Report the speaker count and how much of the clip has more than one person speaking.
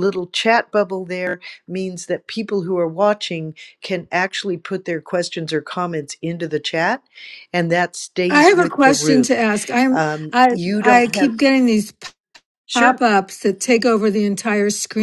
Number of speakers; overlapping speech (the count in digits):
2, about 17%